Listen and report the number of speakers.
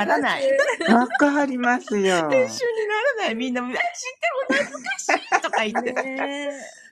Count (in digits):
3